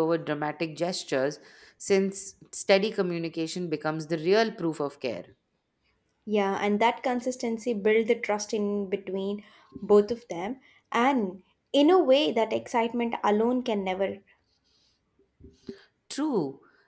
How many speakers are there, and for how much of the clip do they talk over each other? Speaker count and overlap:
two, no overlap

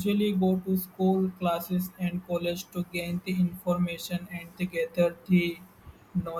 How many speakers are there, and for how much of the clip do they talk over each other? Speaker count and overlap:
one, no overlap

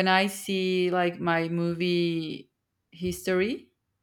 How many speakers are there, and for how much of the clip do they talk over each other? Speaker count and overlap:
one, no overlap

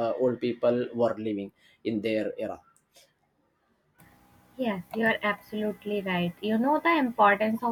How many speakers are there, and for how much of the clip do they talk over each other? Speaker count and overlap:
two, no overlap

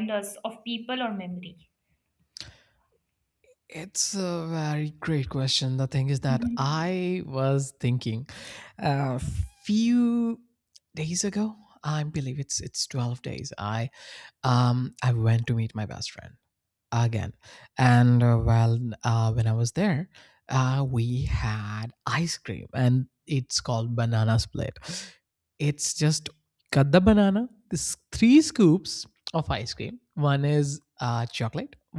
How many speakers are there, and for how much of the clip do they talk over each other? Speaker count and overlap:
two, about 1%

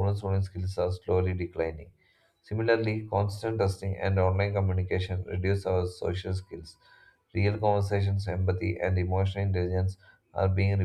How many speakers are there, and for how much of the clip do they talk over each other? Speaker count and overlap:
one, no overlap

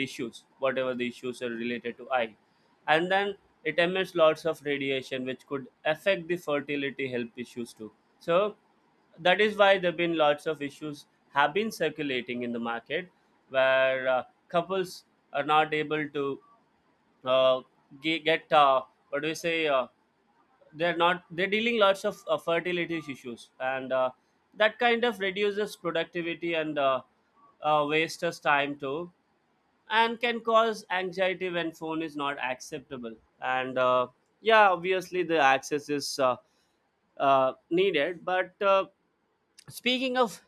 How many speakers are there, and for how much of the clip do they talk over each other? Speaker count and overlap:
one, no overlap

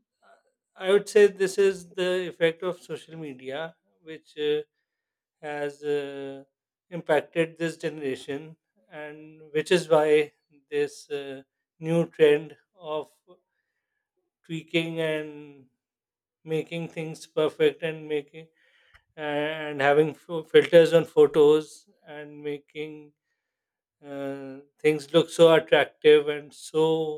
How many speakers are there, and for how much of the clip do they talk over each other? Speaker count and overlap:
one, no overlap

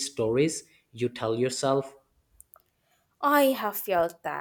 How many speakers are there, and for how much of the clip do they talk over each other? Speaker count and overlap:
two, no overlap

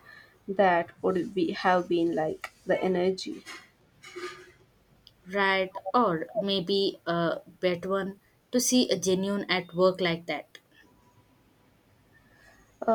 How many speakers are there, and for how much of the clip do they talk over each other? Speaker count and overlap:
two, no overlap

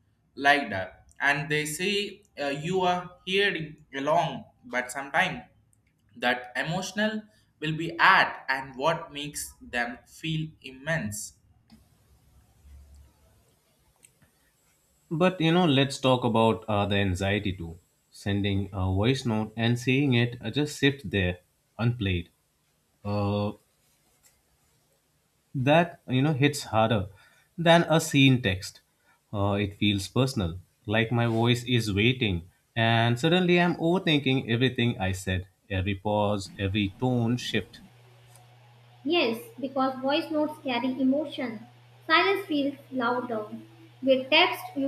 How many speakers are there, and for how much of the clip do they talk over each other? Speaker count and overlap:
three, no overlap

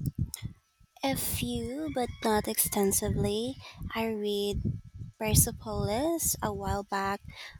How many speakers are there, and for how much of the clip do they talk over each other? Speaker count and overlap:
one, no overlap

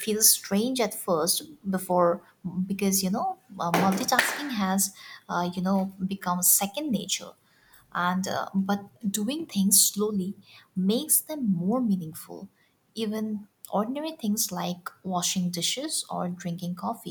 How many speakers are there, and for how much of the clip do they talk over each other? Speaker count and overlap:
one, no overlap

